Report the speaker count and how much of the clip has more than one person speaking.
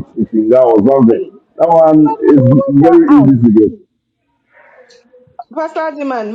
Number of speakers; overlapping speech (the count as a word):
two, about 25%